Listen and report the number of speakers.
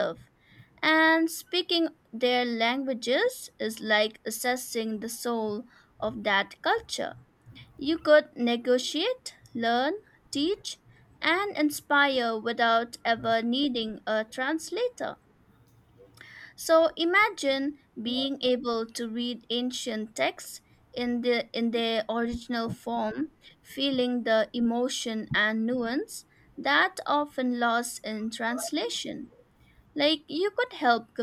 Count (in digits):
1